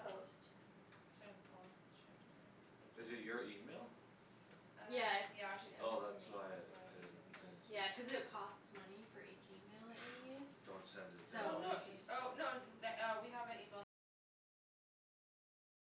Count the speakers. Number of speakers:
three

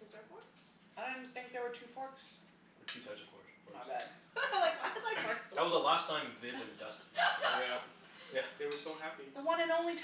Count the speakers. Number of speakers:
four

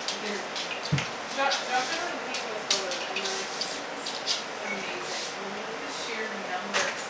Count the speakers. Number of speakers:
one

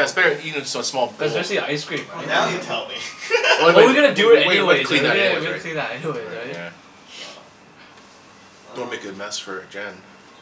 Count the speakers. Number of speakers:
three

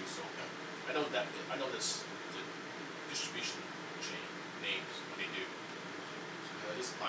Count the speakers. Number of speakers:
one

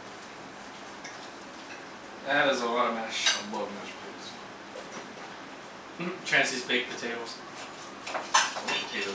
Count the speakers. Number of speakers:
two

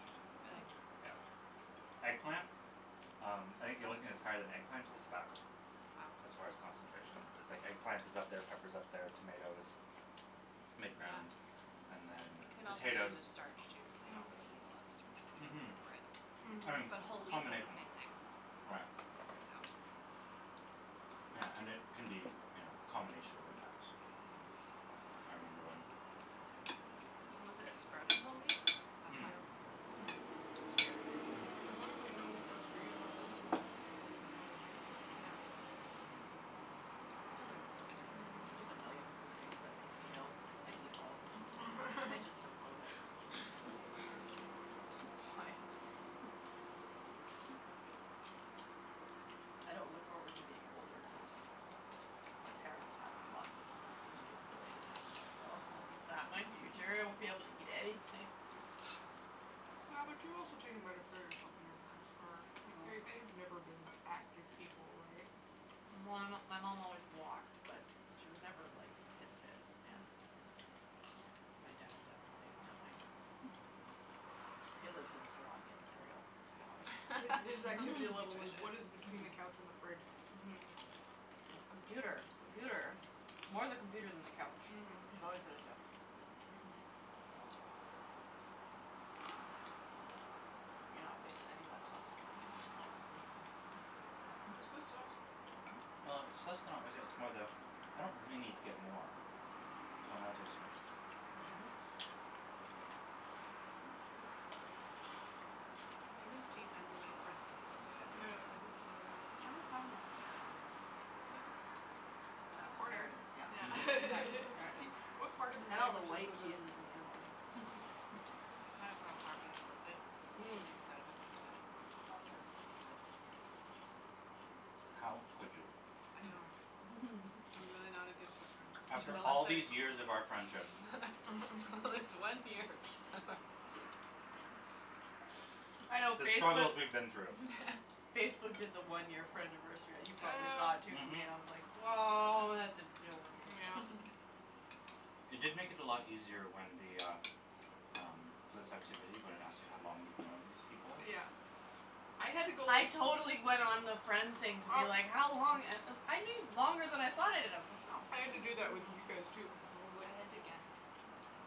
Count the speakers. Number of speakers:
four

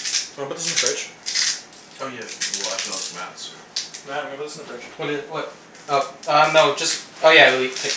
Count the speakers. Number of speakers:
three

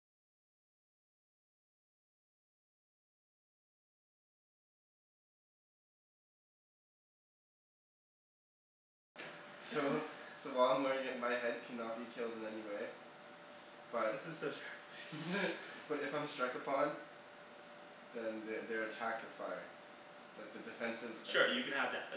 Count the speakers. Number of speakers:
two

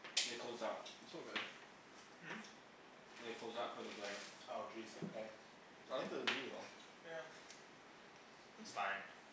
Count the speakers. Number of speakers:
three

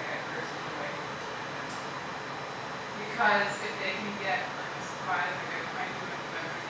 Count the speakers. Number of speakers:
one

